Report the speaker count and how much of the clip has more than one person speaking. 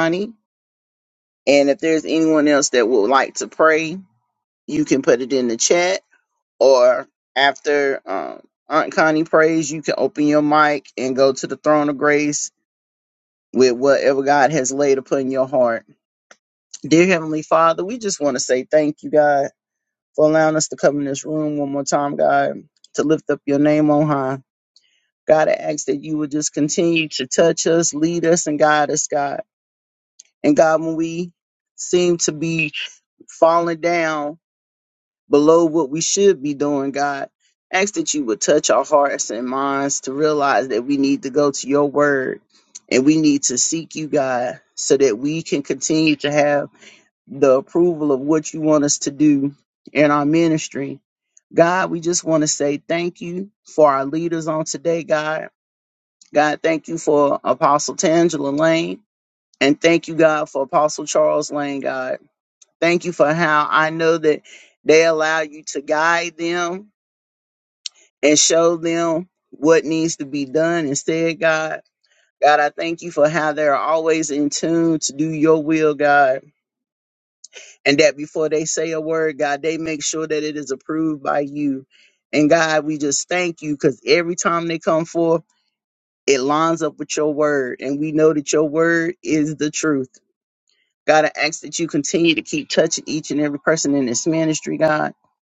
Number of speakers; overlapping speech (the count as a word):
one, no overlap